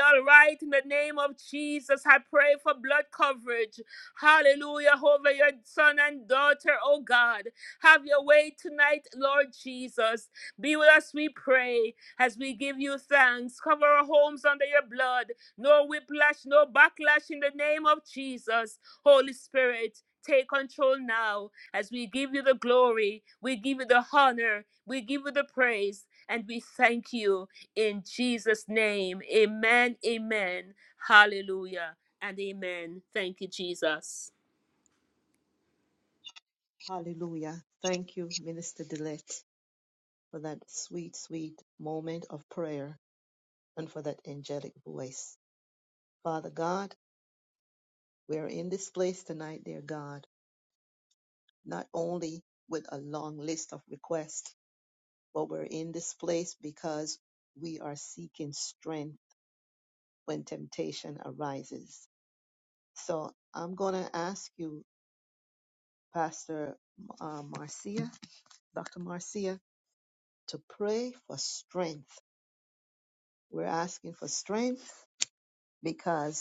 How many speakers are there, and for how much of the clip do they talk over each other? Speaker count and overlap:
2, no overlap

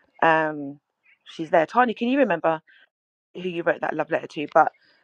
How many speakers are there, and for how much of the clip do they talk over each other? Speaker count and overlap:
1, no overlap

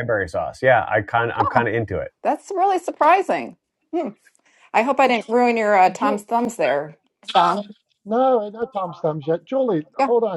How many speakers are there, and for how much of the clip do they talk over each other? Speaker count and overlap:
3, about 6%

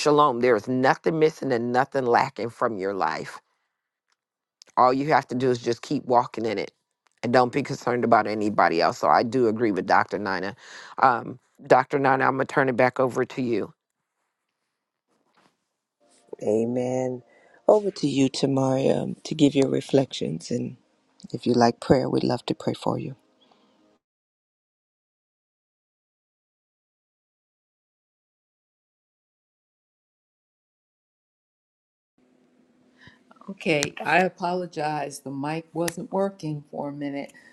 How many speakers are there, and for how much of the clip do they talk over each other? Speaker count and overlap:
3, no overlap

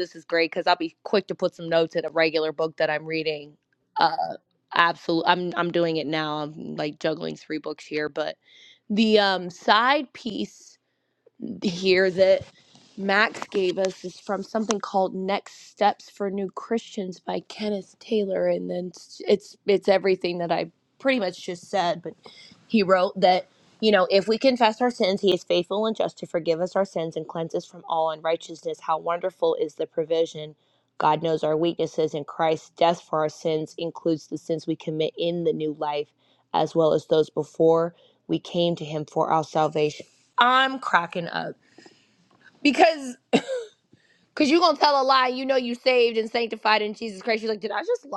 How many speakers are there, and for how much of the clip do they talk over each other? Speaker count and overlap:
1, no overlap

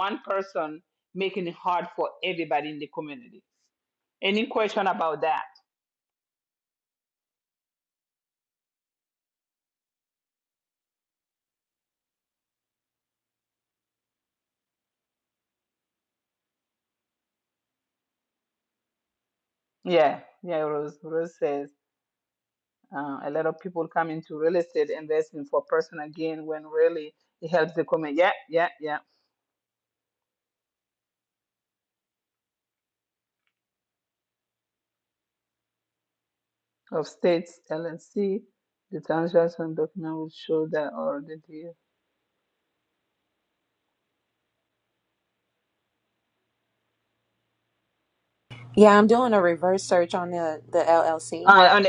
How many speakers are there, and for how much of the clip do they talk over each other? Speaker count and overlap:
2, under 1%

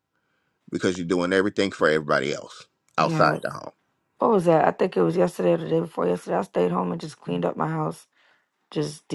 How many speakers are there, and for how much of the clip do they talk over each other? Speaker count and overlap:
2, about 4%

